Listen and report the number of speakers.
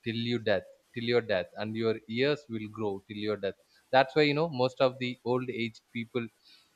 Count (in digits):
1